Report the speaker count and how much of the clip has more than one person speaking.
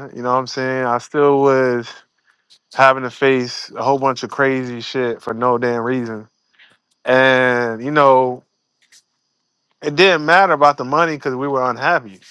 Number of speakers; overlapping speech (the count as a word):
one, no overlap